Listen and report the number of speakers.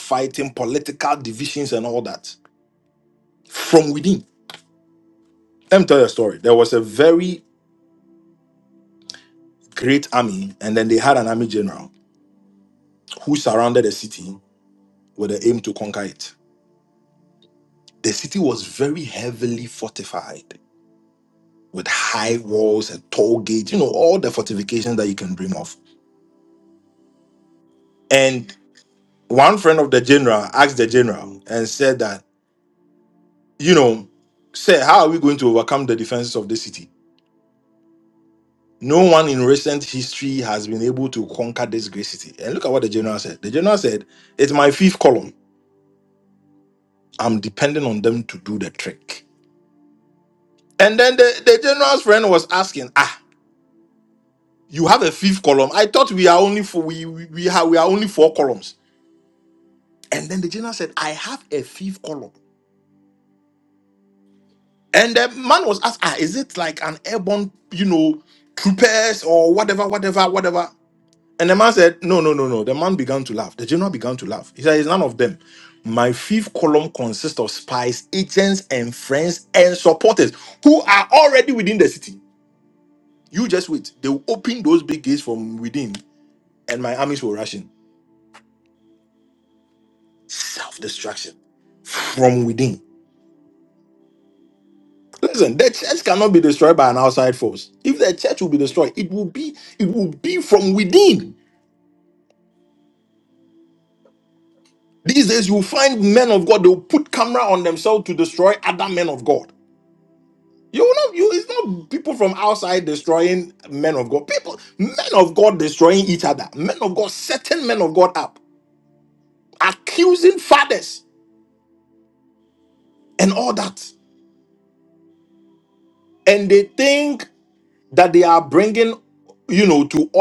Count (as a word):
one